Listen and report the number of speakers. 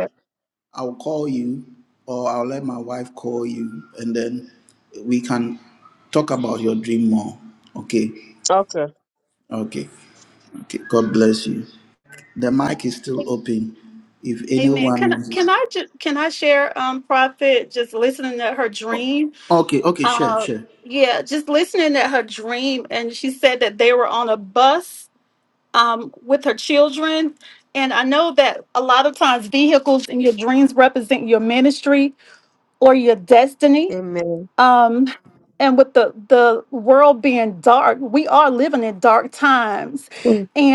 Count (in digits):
3